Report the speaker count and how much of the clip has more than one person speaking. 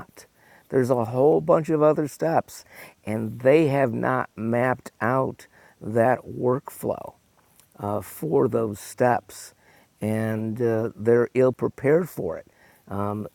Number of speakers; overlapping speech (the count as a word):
one, no overlap